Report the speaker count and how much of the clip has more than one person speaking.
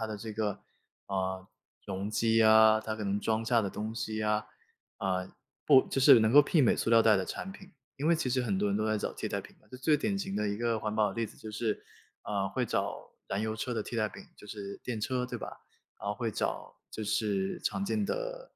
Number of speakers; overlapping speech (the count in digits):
1, no overlap